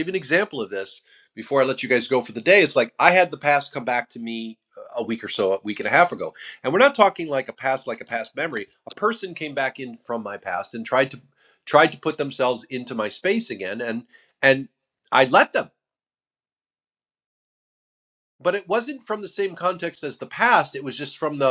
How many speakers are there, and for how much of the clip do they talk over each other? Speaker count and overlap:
1, no overlap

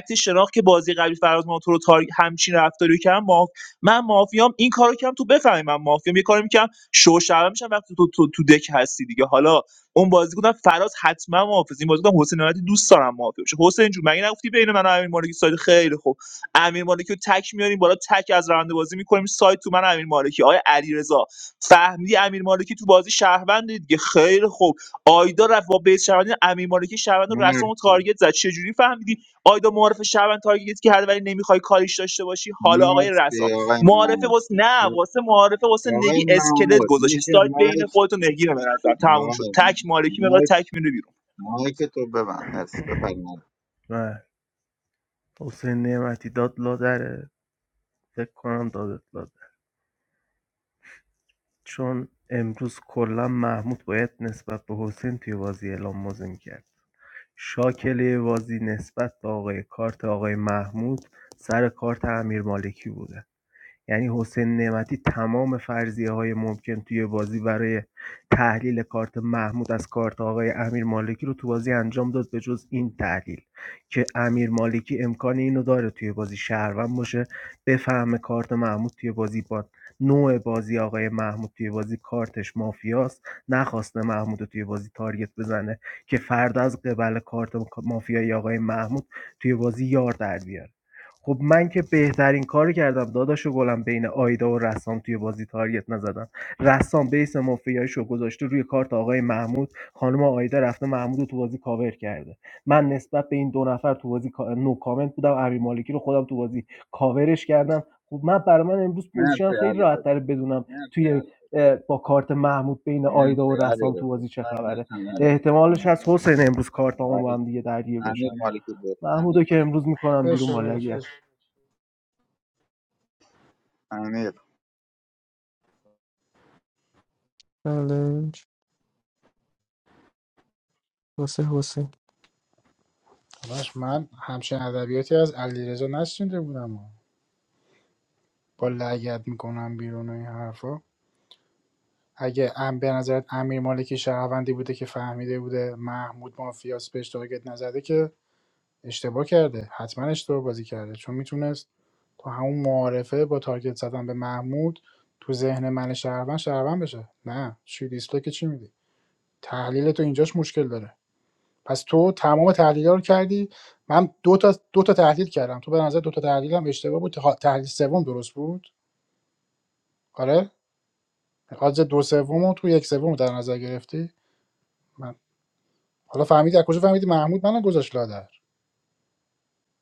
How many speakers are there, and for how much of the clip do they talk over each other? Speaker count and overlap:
5, about 5%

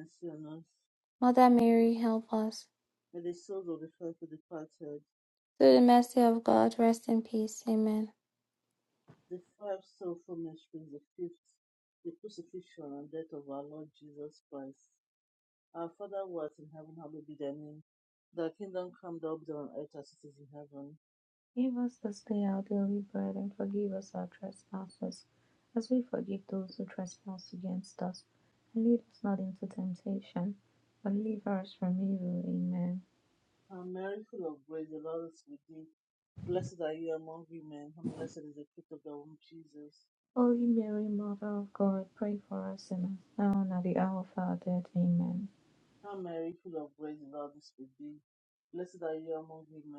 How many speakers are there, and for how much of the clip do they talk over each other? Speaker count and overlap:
3, no overlap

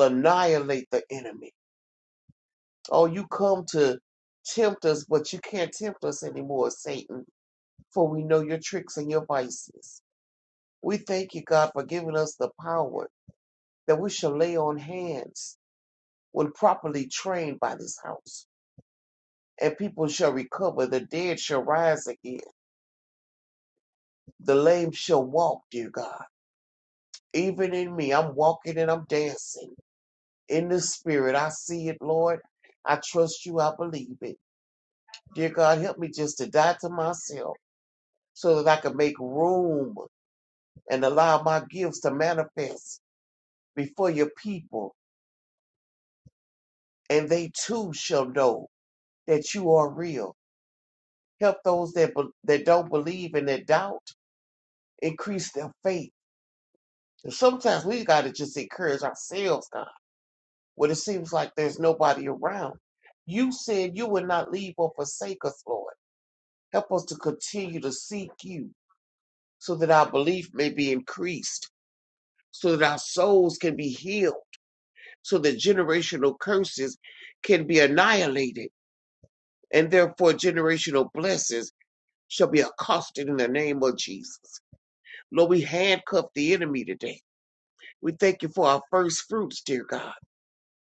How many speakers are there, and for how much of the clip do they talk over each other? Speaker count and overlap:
1, no overlap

